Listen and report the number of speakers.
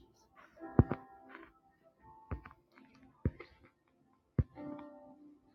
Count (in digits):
0